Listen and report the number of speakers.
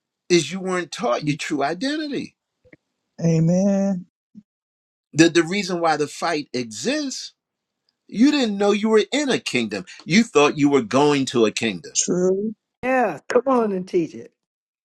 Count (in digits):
3